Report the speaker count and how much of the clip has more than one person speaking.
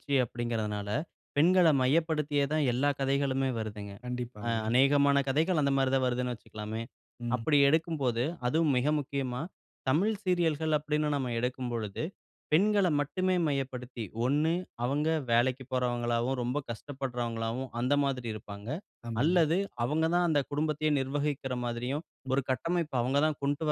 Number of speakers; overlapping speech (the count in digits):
2, about 3%